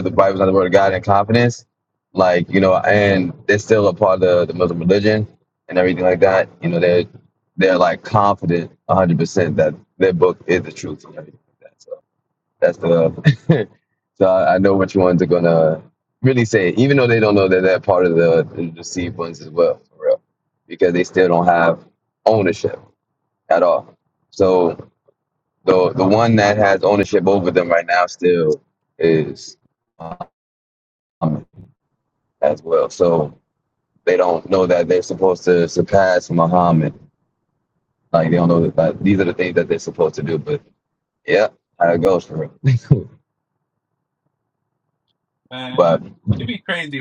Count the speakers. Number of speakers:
2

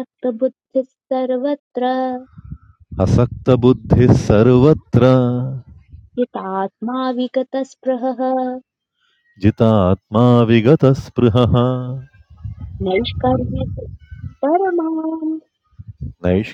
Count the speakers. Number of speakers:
2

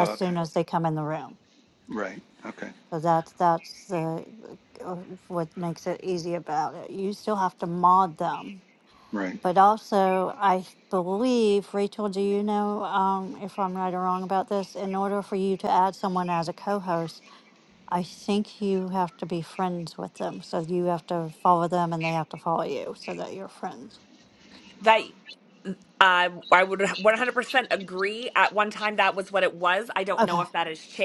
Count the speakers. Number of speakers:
3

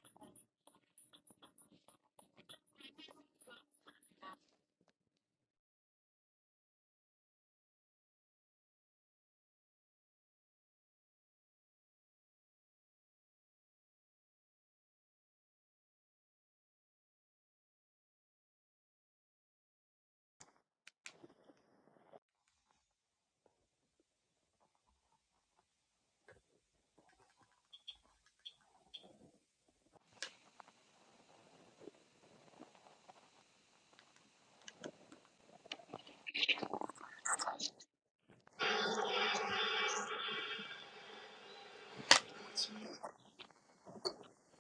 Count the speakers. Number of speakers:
0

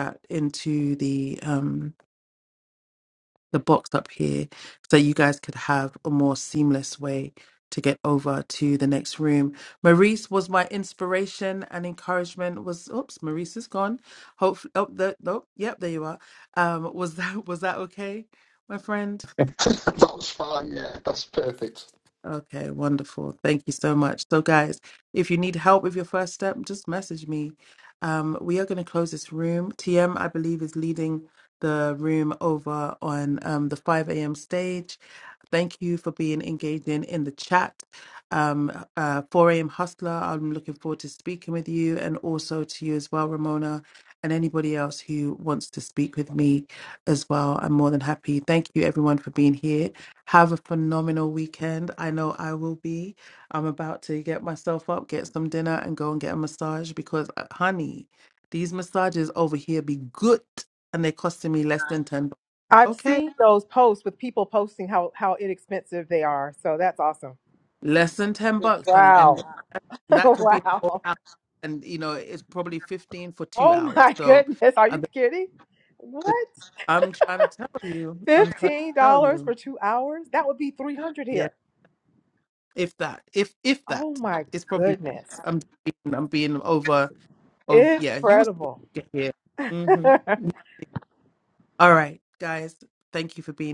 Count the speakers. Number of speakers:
3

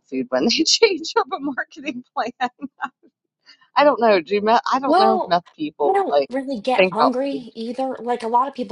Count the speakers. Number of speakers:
2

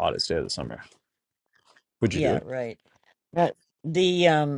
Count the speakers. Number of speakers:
2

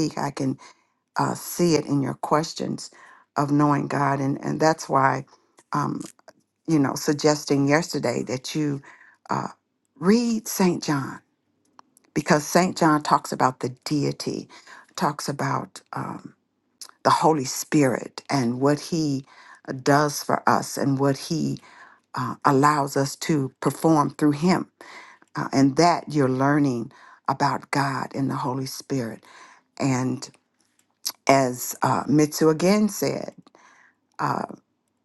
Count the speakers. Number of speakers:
1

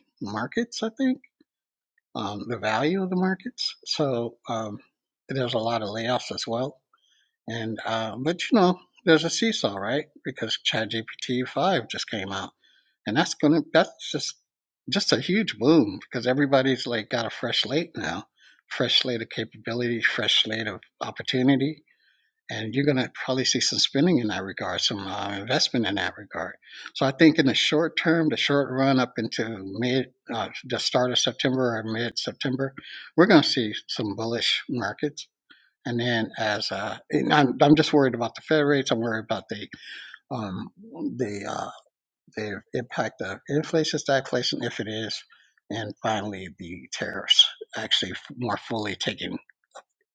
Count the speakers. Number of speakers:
1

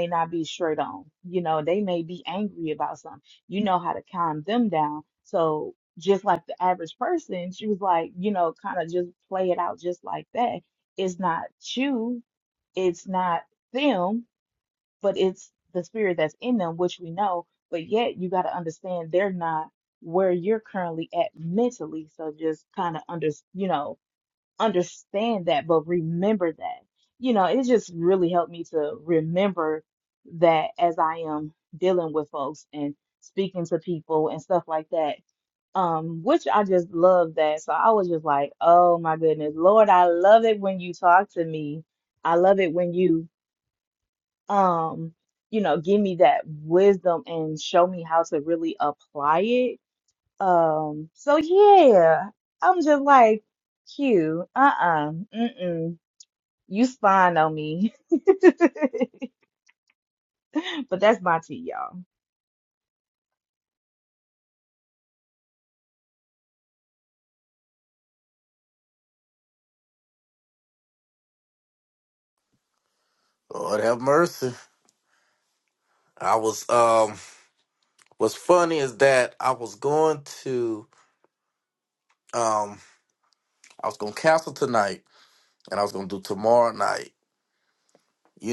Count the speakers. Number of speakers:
2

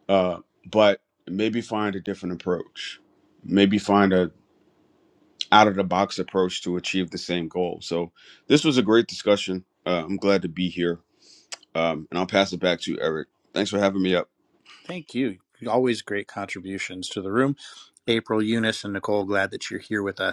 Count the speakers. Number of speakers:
2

